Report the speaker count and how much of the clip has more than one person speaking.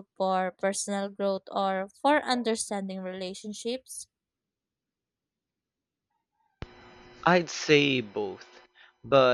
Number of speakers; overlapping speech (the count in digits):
2, no overlap